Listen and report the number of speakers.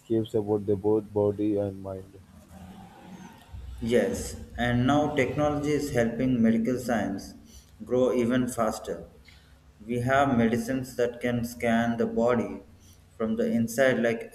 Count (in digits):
2